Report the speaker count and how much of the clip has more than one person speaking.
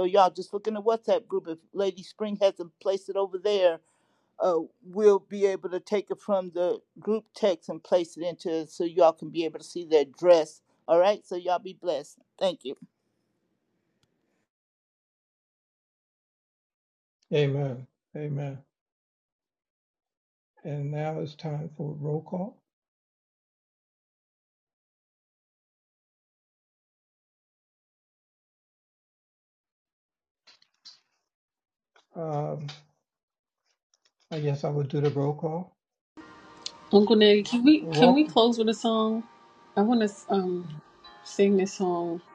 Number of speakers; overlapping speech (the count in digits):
3, about 1%